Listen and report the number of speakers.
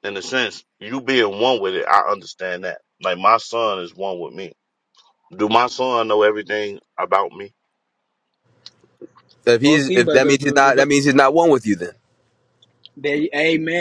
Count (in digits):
3